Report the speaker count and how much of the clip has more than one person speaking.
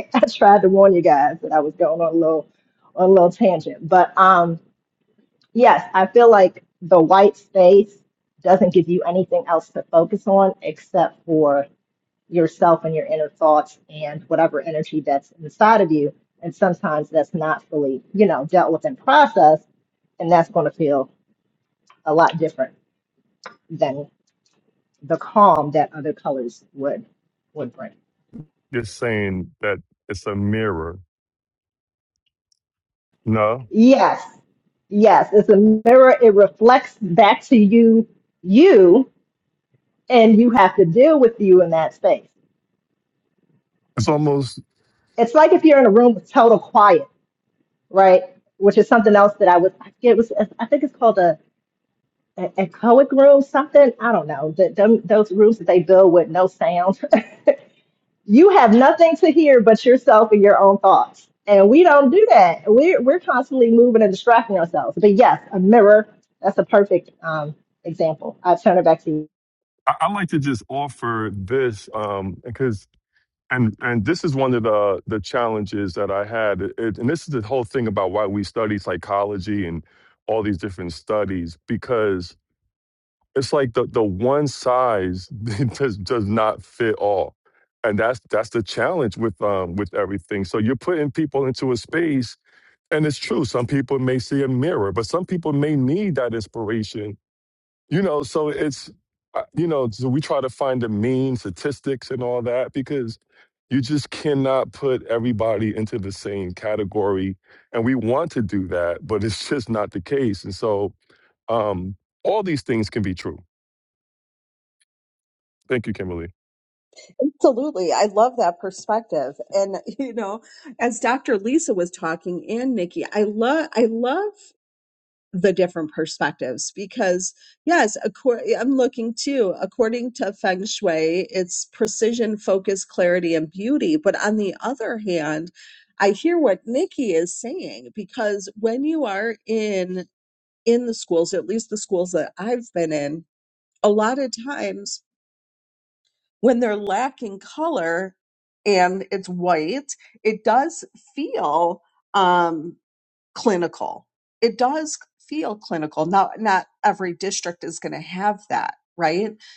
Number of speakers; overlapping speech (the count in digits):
3, no overlap